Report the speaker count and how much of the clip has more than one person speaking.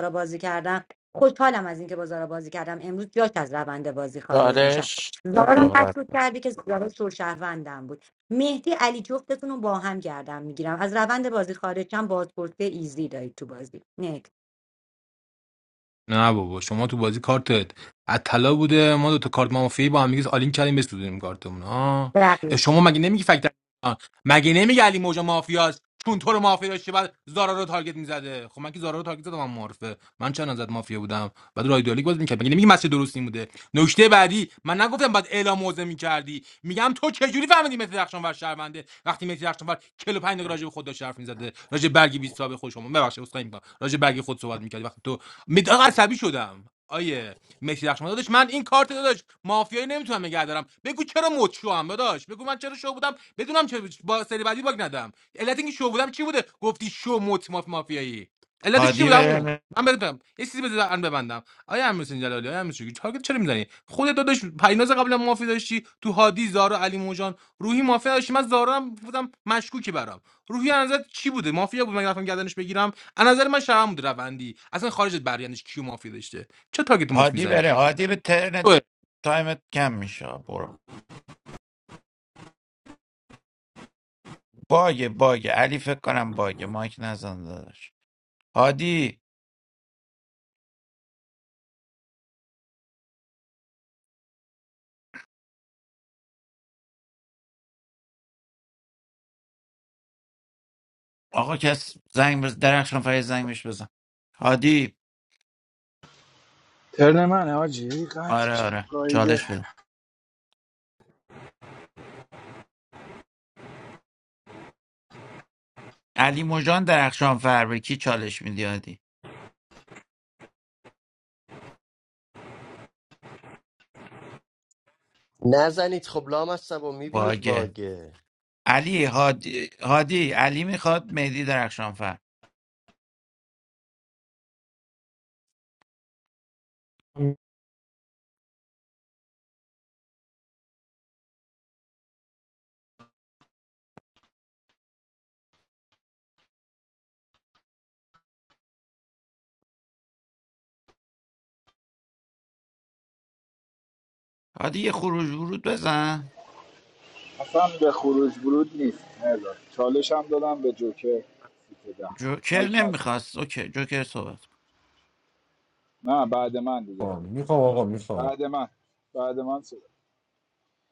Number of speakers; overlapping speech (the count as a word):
six, about 3%